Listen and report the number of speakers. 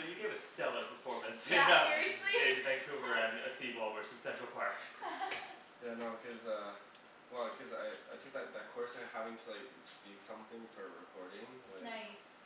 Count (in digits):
3